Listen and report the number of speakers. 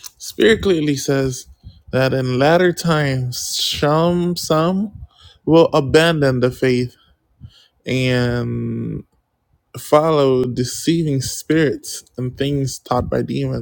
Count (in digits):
1